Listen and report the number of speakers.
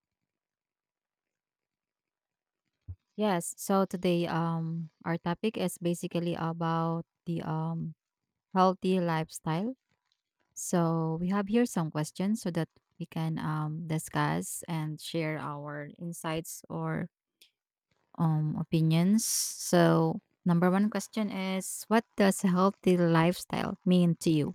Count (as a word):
one